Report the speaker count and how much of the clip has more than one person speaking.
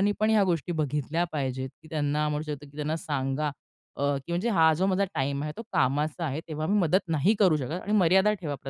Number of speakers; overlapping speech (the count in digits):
1, no overlap